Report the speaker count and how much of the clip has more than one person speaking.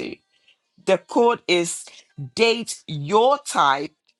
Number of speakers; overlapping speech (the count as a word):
one, no overlap